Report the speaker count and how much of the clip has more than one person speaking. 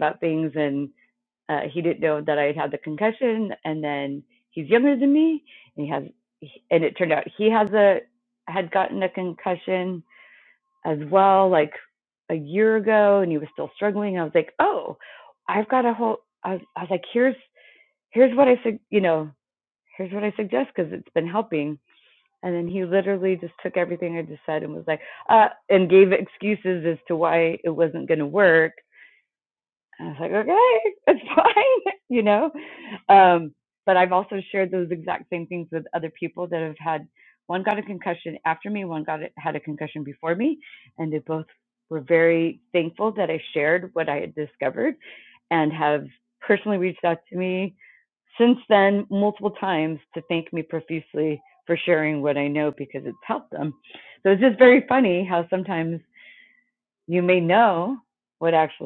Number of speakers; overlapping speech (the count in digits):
1, no overlap